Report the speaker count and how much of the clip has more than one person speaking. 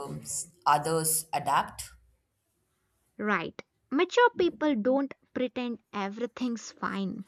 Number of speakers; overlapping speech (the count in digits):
2, no overlap